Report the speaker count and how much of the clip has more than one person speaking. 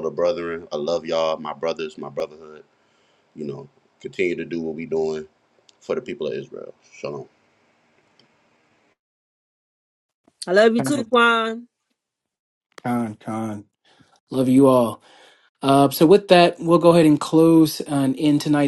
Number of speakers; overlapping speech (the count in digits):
3, no overlap